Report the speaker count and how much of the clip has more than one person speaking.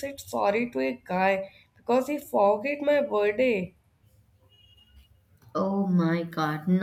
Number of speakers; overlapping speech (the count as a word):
two, no overlap